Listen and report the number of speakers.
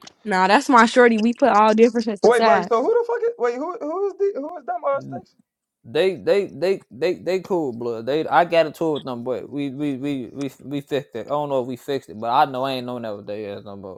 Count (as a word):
three